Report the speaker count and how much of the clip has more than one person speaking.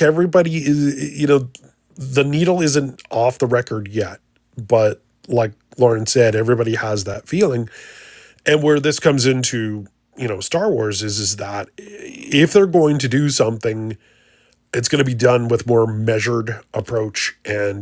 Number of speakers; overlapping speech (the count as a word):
one, no overlap